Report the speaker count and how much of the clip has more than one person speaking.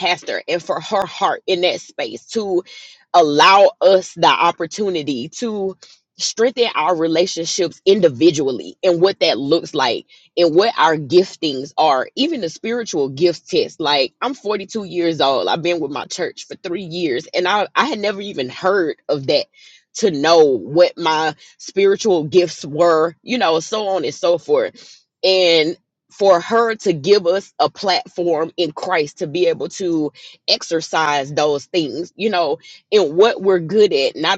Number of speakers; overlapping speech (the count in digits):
1, no overlap